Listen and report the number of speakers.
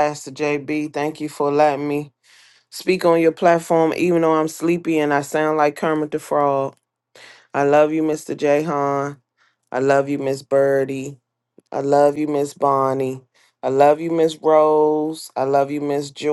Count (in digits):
1